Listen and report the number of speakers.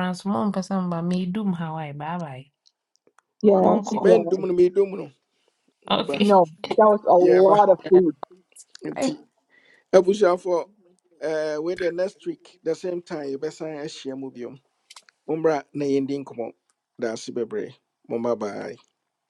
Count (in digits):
3